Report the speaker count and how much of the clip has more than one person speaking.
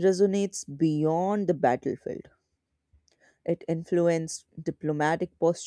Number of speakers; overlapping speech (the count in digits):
1, no overlap